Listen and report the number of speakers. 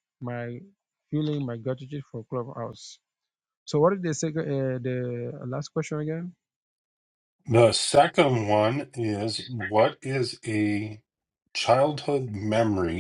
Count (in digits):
2